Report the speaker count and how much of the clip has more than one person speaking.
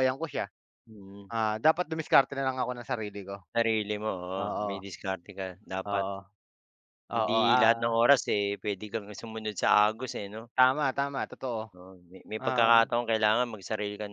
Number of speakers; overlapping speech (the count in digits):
2, about 13%